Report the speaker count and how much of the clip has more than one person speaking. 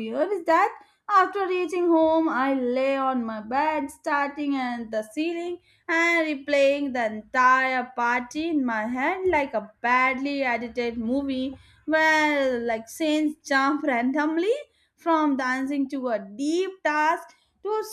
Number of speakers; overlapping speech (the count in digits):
1, no overlap